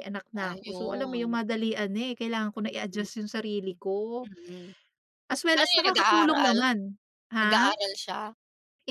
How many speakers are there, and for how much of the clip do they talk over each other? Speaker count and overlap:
2, about 28%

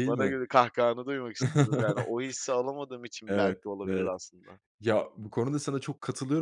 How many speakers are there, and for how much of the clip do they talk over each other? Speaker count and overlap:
2, about 18%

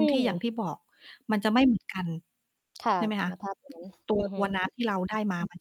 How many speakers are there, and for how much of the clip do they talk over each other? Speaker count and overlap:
2, about 17%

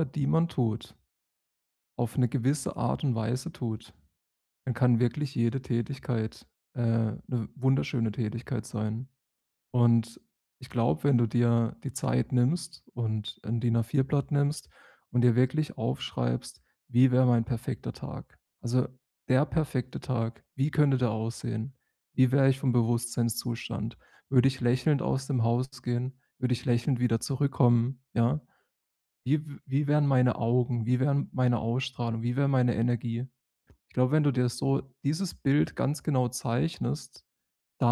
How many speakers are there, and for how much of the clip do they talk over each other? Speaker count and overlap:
1, no overlap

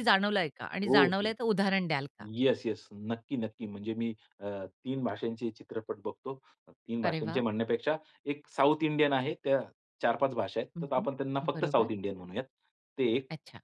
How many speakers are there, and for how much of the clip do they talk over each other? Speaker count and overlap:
2, about 11%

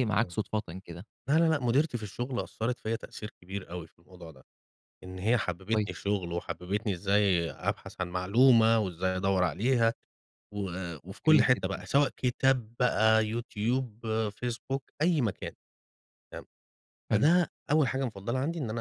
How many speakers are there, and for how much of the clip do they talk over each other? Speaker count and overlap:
2, about 5%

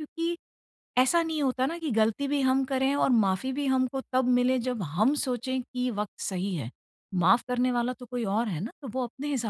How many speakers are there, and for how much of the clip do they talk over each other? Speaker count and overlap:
1, no overlap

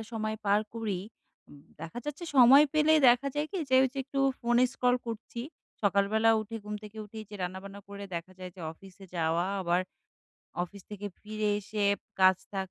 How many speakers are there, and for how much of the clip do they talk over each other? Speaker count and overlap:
1, no overlap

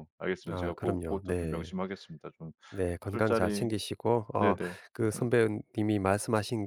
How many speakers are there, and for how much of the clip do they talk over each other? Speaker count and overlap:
2, about 28%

